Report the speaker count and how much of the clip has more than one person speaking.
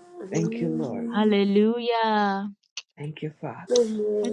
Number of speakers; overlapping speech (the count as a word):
three, about 24%